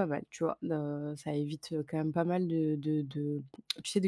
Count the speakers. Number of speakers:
1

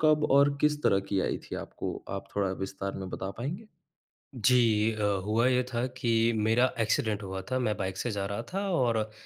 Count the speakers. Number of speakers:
2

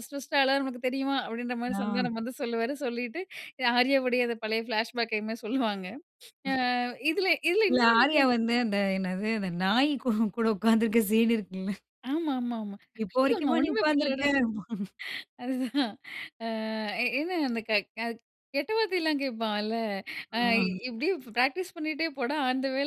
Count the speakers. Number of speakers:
2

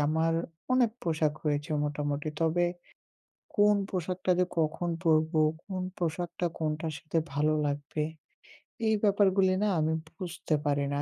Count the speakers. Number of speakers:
1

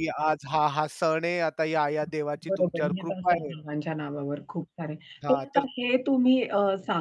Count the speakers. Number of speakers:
2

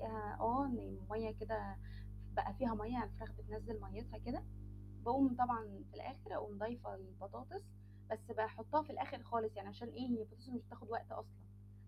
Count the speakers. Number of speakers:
1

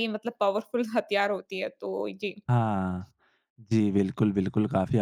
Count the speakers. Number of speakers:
2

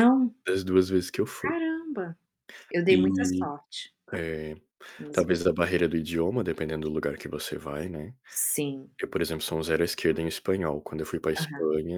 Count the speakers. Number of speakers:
2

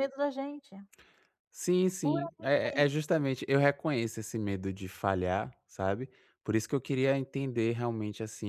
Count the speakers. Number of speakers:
2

